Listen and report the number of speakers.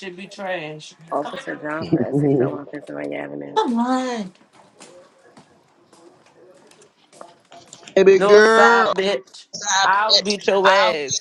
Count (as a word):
three